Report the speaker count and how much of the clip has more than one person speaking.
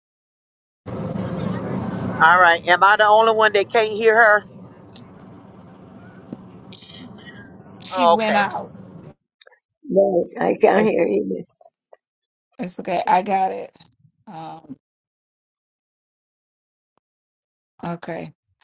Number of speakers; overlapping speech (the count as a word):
three, about 4%